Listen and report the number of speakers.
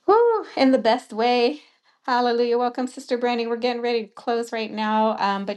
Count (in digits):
1